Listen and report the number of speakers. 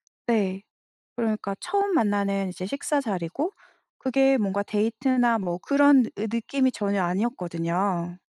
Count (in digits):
1